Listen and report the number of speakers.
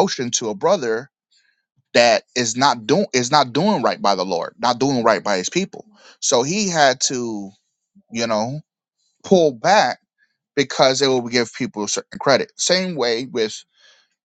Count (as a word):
one